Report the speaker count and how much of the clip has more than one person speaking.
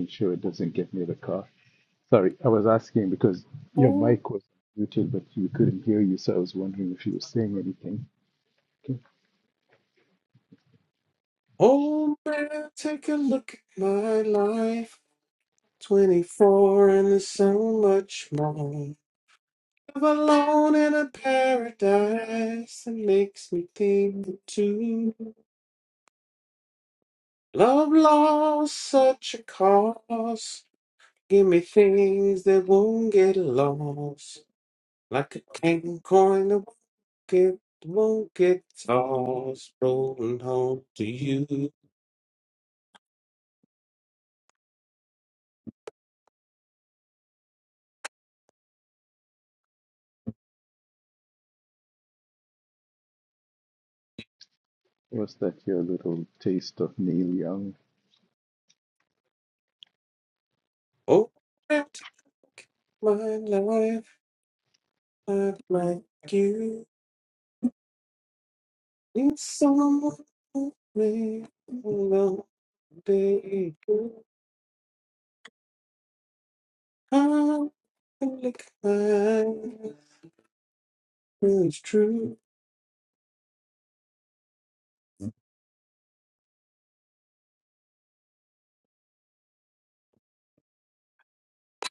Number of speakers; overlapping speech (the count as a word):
two, no overlap